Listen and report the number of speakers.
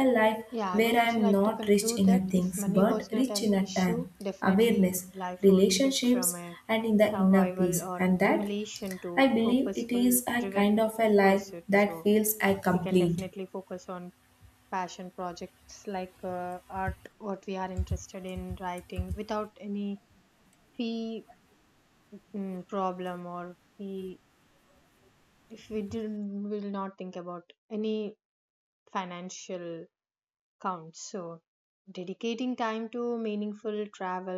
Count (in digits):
2